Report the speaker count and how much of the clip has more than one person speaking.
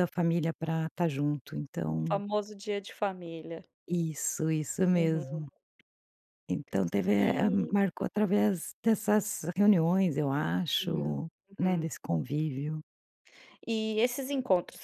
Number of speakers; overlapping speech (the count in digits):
2, about 13%